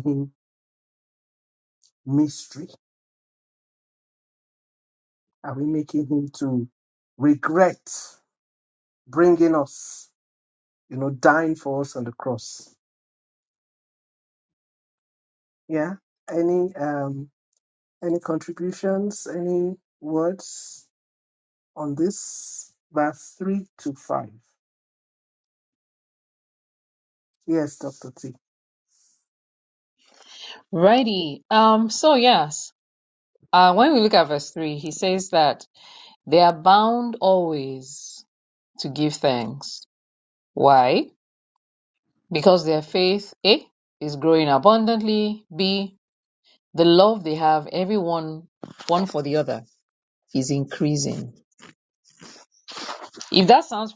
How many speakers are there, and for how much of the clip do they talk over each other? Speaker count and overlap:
2, no overlap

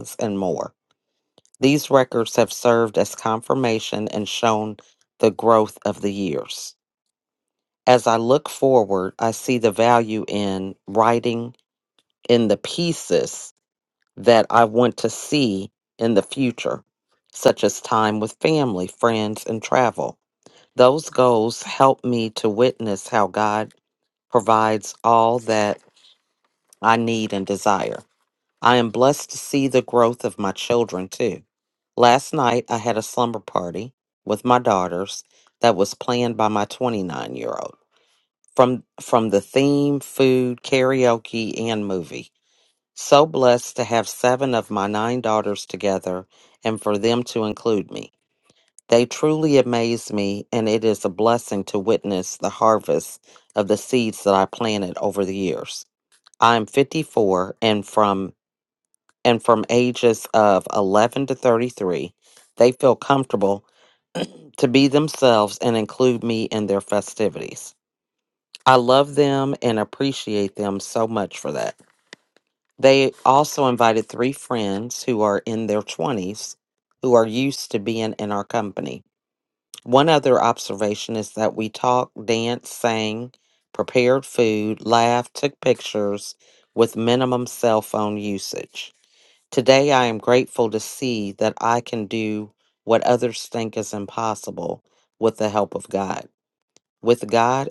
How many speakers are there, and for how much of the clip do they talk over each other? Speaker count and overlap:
1, no overlap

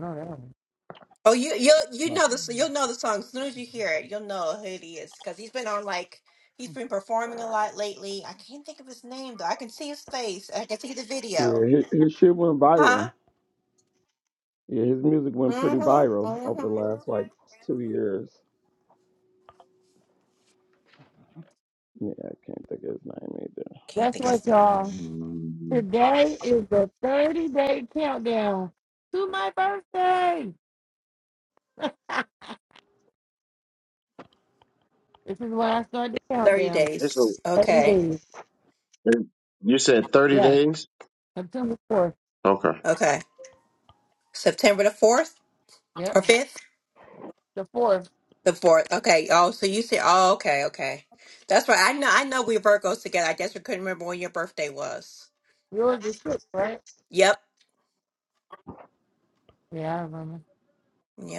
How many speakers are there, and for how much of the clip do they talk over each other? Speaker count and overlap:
4, about 6%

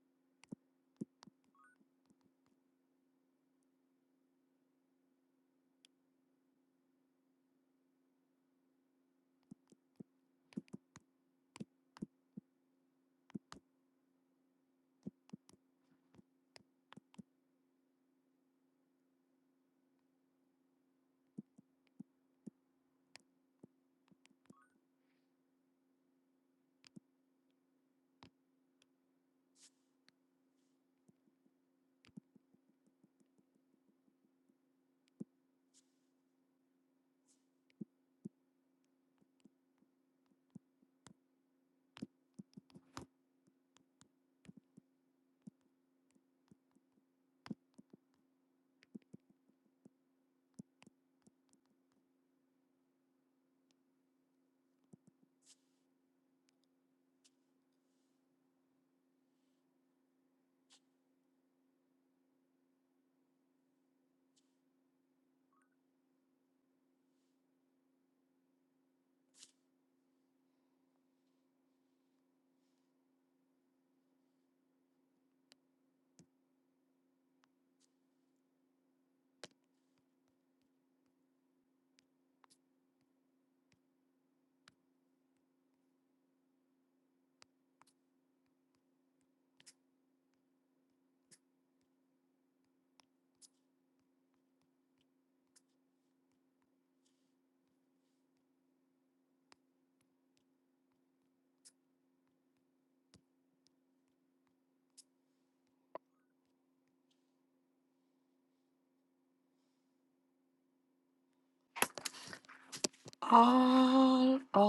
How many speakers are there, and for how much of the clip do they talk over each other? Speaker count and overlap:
1, no overlap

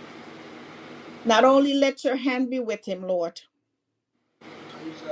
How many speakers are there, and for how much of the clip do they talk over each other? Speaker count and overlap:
1, no overlap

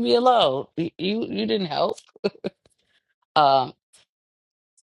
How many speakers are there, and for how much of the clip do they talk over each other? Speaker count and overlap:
1, no overlap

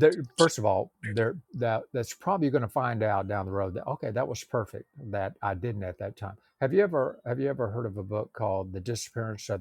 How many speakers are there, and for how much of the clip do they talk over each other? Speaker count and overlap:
1, no overlap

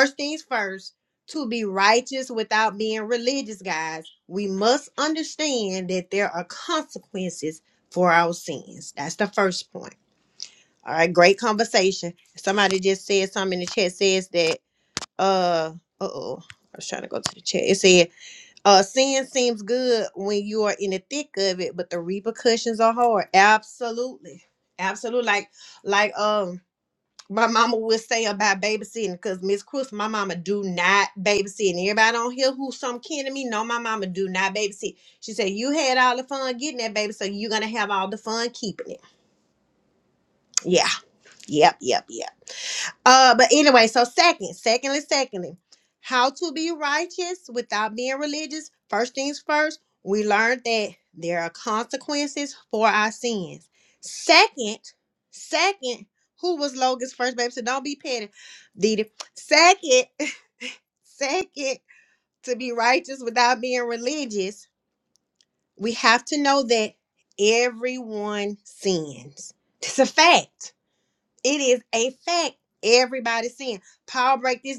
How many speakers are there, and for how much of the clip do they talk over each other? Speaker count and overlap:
1, no overlap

